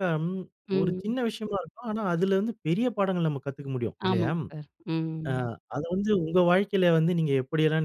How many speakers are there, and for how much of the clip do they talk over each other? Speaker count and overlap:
2, about 9%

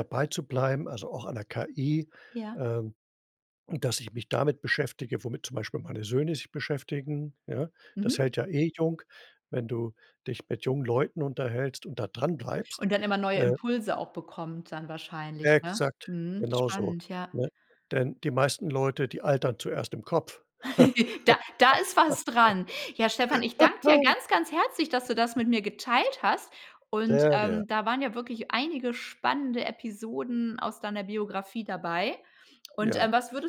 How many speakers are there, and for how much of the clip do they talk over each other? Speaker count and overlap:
2, about 8%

